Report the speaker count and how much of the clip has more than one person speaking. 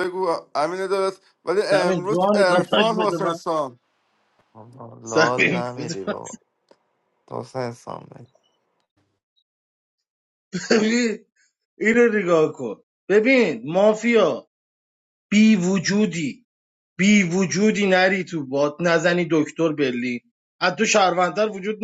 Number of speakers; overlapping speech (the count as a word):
three, about 12%